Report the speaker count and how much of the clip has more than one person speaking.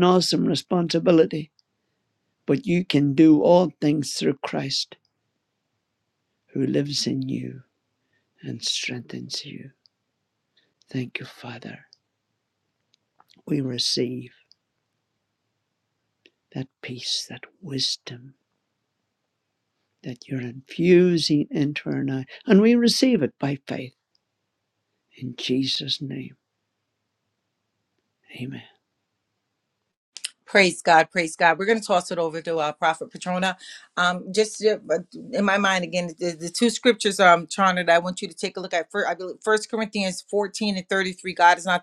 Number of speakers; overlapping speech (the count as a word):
two, no overlap